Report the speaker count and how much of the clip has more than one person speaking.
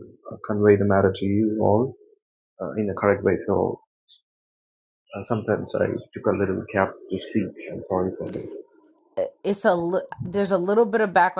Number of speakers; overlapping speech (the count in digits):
2, no overlap